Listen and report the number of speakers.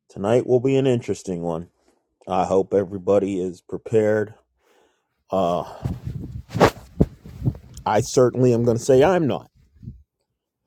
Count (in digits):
1